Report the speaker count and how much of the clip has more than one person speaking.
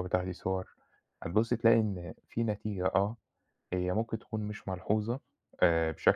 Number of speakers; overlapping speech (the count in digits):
1, no overlap